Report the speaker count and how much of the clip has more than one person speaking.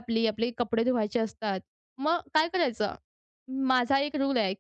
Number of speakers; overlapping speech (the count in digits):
1, no overlap